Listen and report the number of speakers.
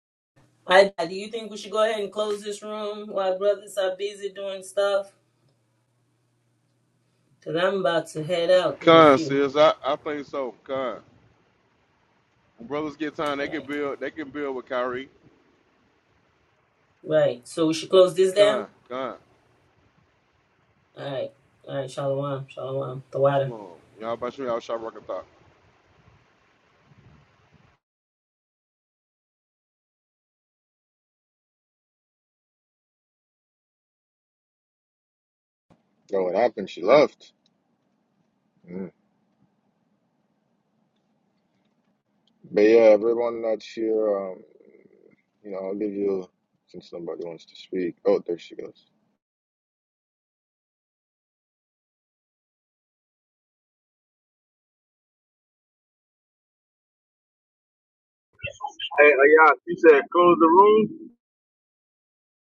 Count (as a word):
four